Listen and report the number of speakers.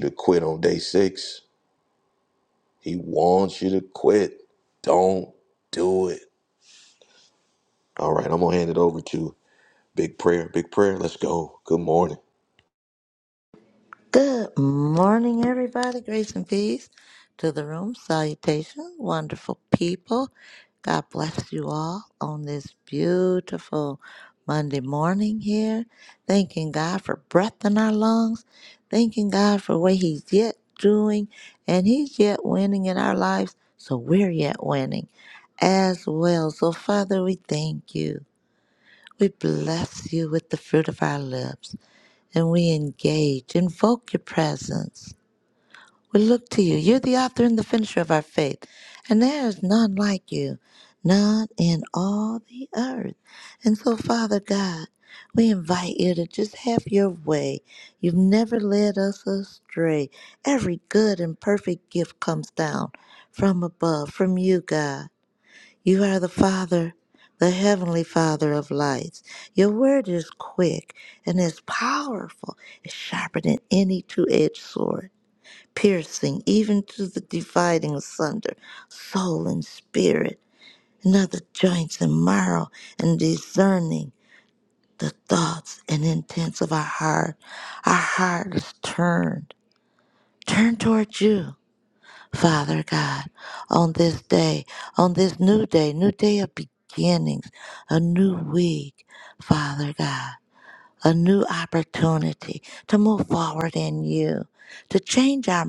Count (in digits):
2